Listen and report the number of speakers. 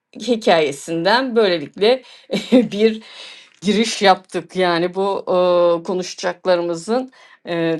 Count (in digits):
1